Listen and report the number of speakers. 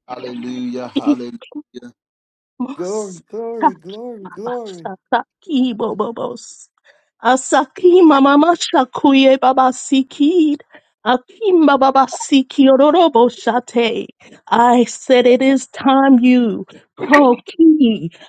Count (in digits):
3